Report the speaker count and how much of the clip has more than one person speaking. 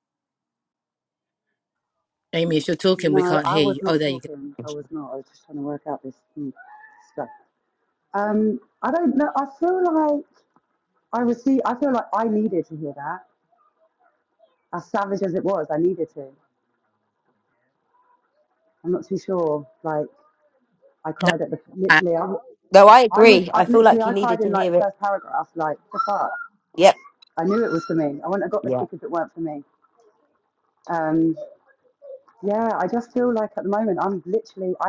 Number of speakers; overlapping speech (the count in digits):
3, about 10%